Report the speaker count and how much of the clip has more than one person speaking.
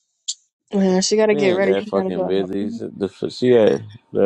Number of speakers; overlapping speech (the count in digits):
2, about 27%